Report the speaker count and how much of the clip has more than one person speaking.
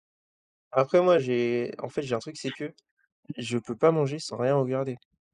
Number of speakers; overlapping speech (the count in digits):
1, no overlap